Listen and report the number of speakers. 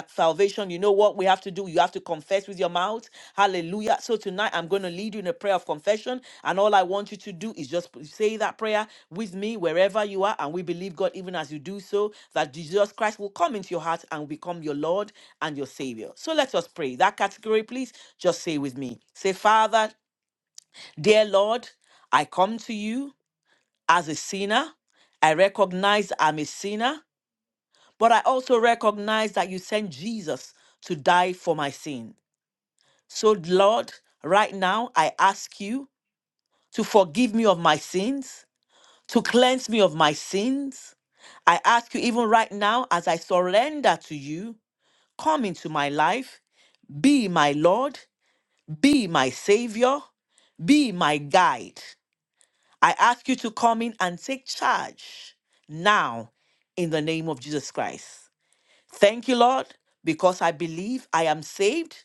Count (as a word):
one